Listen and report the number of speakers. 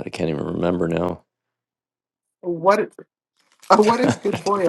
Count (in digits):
2